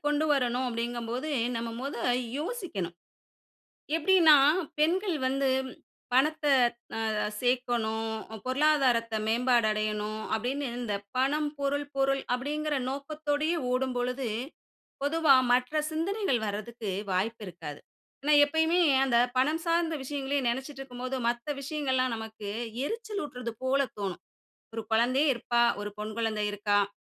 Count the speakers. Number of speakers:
1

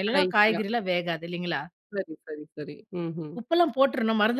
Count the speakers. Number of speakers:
2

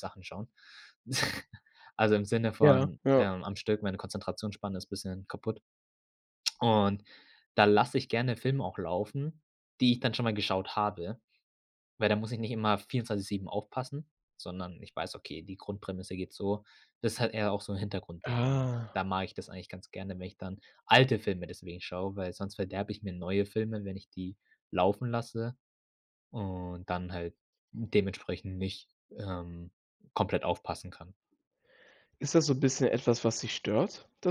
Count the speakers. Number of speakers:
2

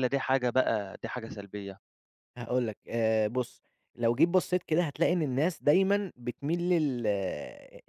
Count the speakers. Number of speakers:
2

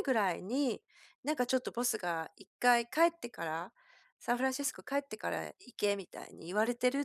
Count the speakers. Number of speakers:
1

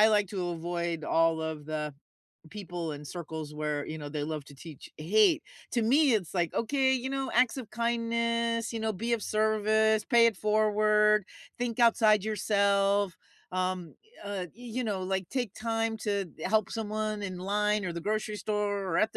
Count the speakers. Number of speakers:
1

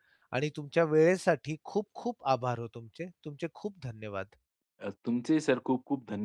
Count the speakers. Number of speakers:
2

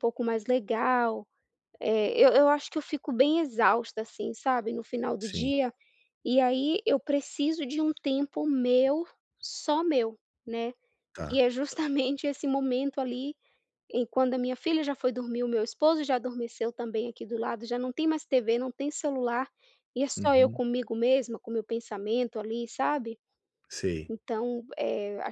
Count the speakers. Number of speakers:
2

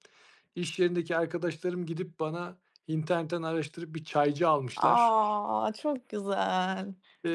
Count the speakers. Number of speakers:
2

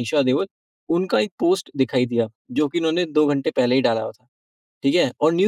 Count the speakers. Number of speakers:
1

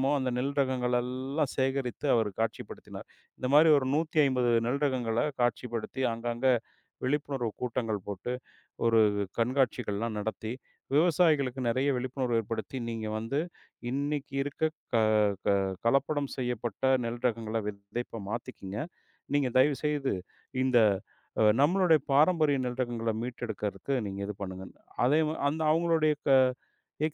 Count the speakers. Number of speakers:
1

